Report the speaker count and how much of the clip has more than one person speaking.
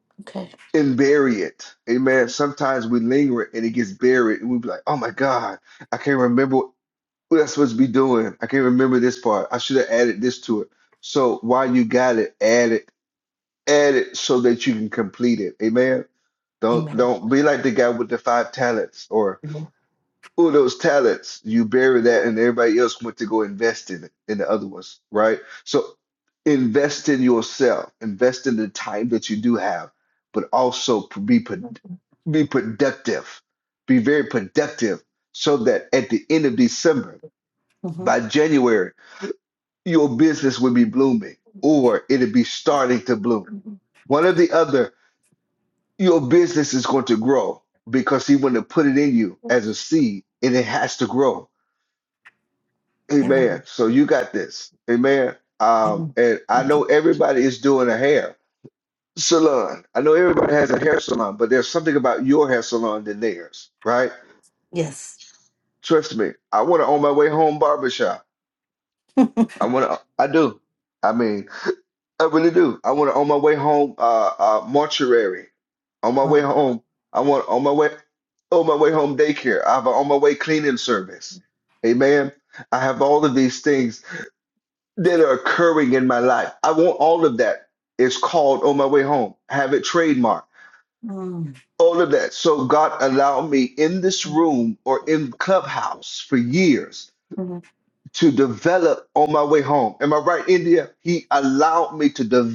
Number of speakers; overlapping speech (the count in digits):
2, about 1%